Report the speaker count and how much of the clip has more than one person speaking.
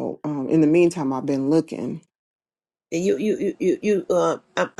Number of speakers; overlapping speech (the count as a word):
two, no overlap